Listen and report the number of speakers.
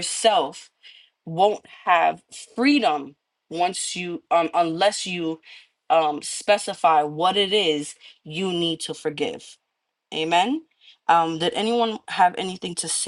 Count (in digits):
1